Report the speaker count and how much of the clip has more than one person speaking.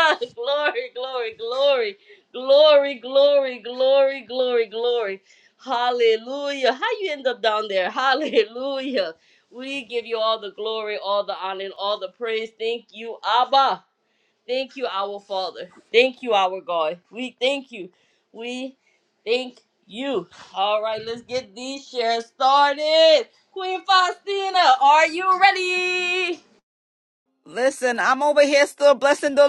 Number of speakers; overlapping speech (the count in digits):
2, no overlap